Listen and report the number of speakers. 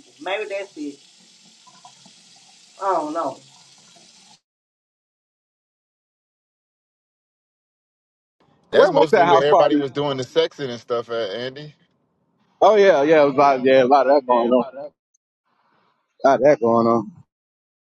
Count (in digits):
3